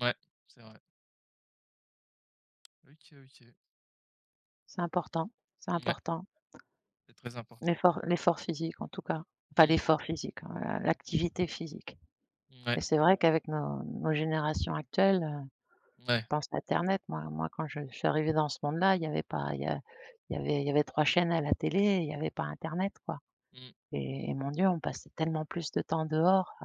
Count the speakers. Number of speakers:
two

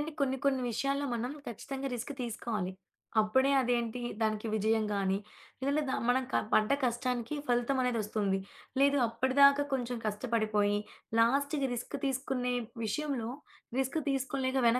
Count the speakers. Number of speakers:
one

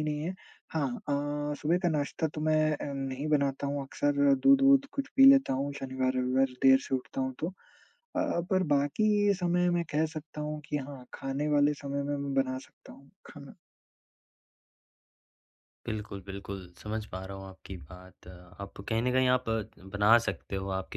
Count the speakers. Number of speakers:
two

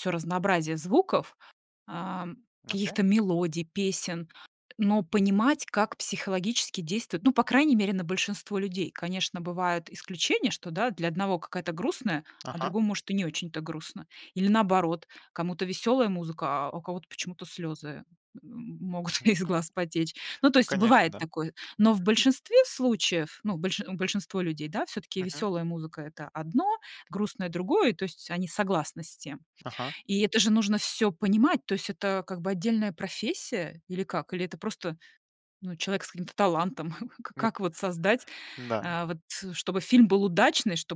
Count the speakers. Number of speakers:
two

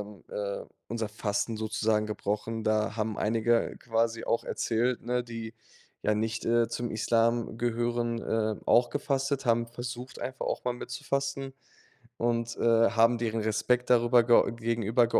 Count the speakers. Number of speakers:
one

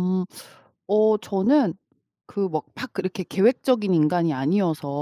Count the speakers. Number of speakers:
one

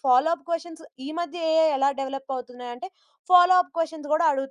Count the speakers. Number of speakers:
one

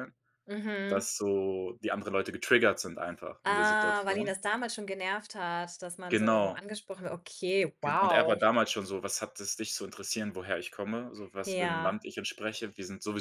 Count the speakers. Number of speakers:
two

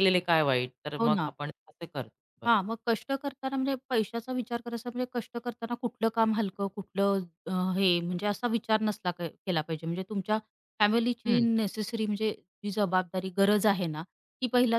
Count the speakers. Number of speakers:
two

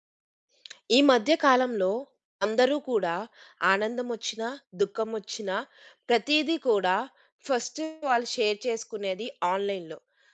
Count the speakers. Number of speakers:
one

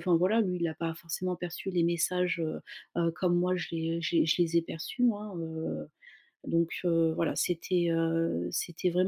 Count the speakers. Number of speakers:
one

